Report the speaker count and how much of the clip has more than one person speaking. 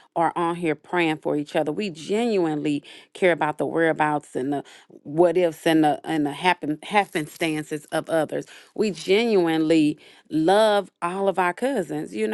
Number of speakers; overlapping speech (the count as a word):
one, no overlap